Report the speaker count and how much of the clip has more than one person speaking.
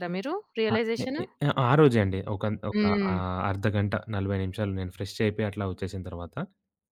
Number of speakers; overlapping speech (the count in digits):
2, about 16%